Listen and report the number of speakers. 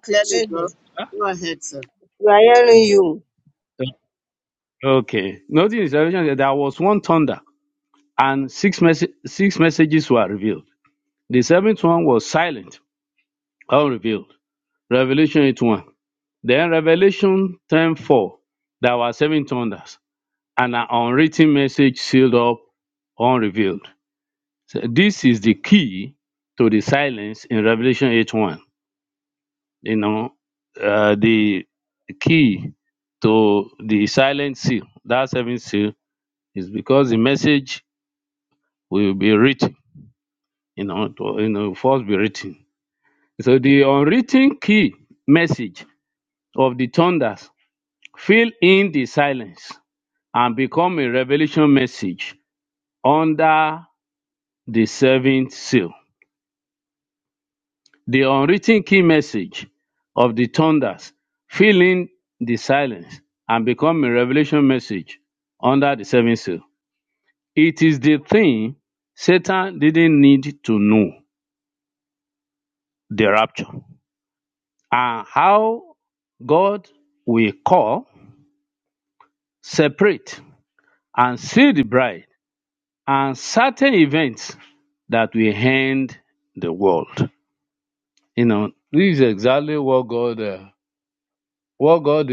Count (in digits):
3